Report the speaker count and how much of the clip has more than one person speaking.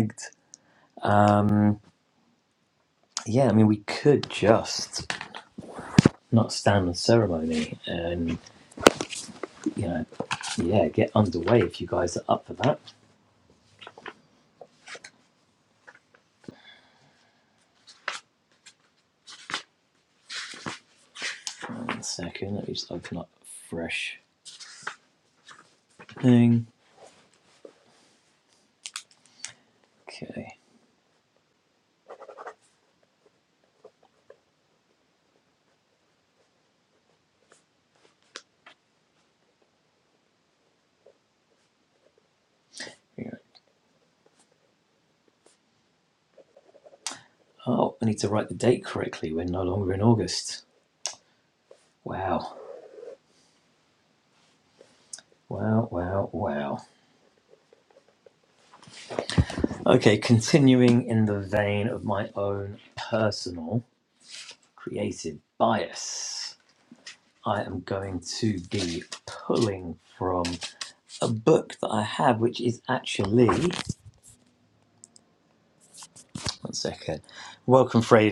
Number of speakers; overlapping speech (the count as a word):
one, no overlap